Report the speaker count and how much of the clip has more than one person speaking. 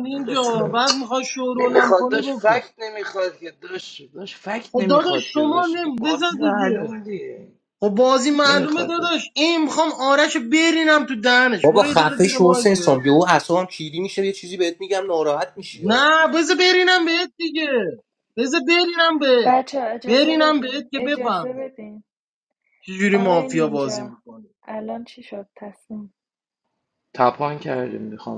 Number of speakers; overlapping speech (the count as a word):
four, about 29%